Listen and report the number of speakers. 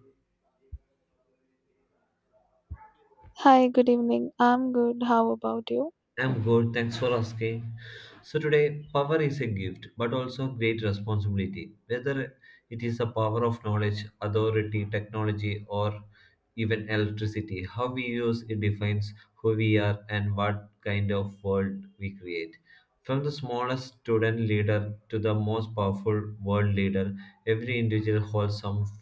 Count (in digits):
2